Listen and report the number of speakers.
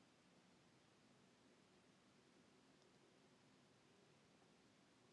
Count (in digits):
0